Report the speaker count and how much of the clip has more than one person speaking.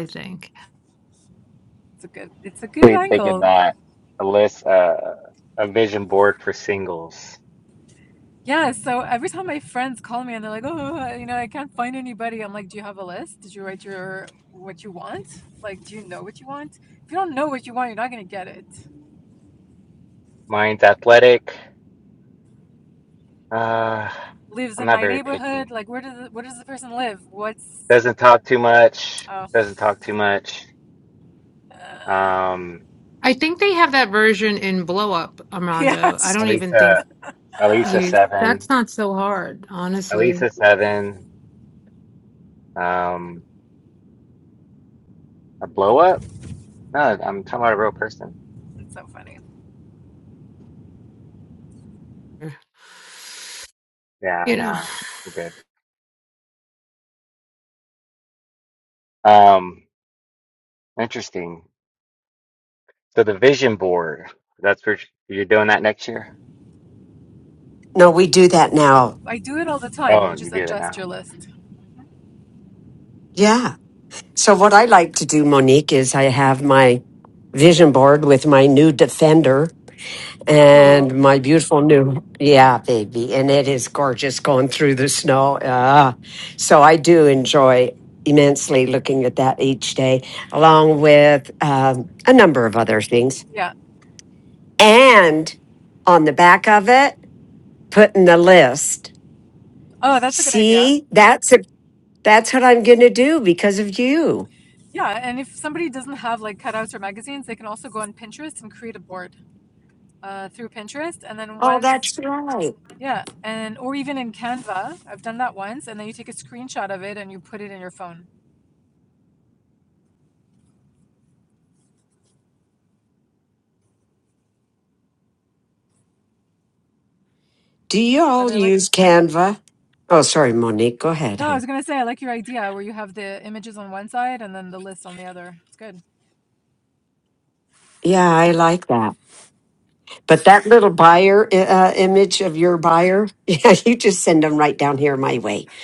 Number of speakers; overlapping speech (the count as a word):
four, about 5%